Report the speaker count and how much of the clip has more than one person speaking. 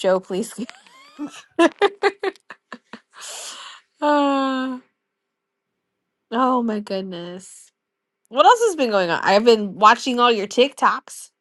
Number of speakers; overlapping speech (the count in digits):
1, no overlap